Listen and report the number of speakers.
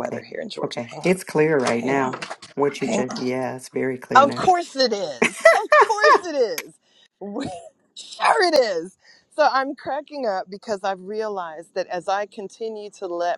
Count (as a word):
two